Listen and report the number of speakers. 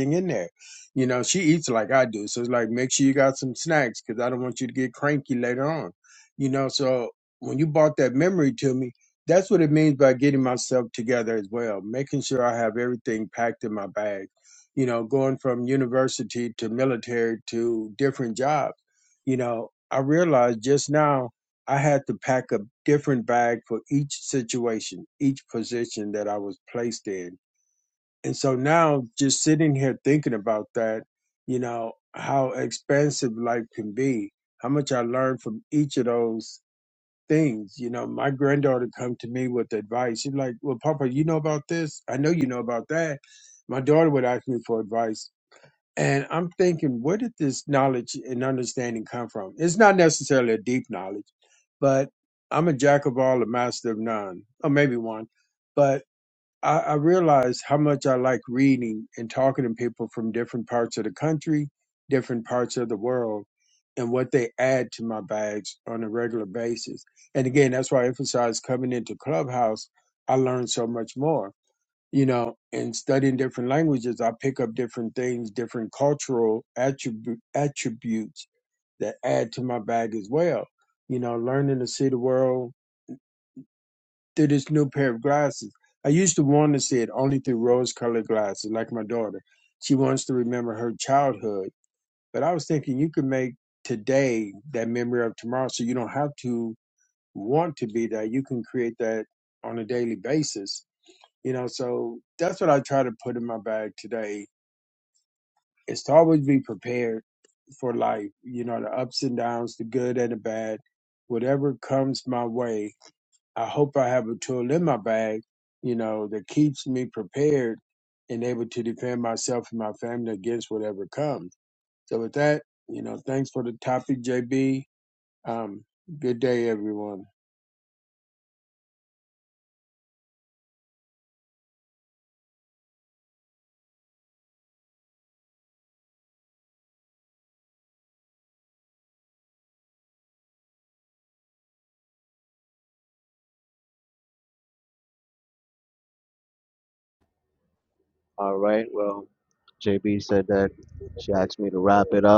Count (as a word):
two